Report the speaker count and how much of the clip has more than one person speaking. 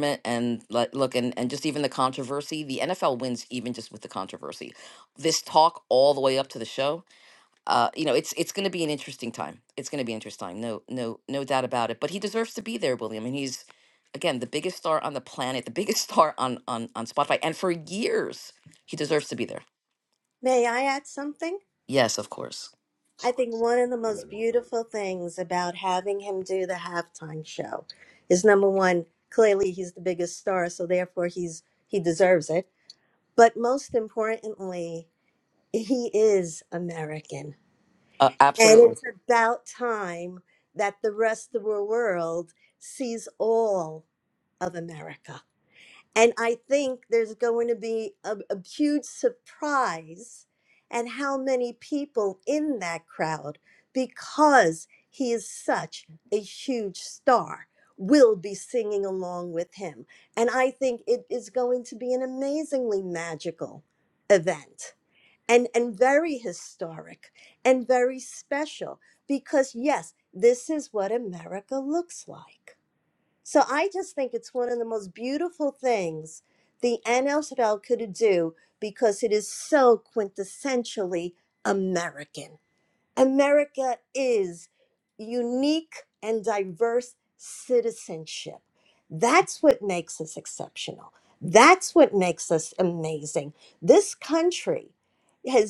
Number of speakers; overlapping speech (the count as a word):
two, under 1%